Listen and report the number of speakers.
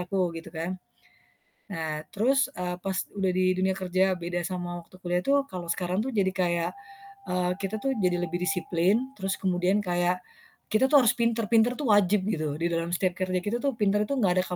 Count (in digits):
1